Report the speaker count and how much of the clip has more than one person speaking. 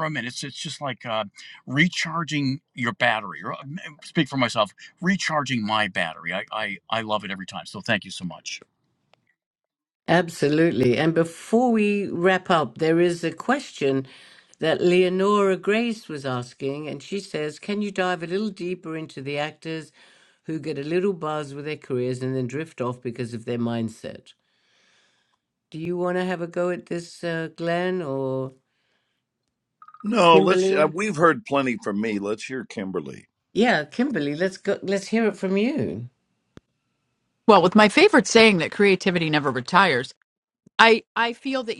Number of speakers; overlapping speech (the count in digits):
4, about 1%